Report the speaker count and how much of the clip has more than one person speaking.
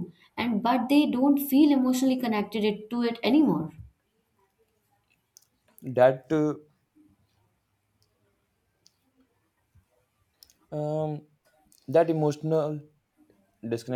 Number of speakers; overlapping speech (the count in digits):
2, no overlap